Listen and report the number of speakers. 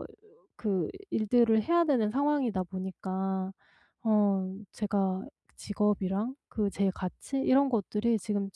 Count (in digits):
1